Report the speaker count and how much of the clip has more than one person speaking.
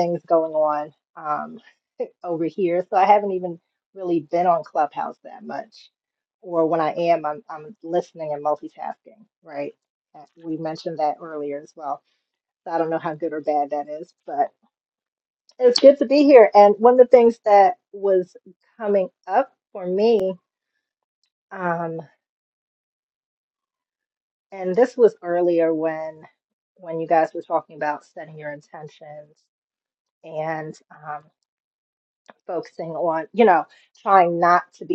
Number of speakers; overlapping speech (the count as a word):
one, no overlap